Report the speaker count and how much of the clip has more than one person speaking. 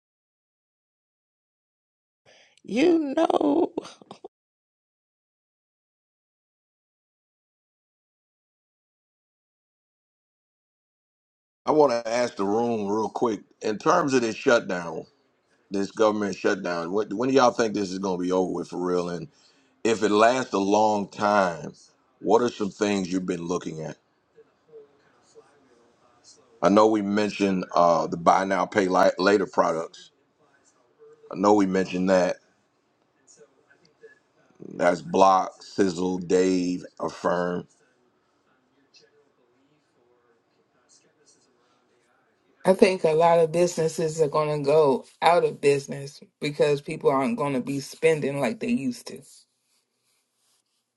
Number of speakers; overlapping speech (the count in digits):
3, no overlap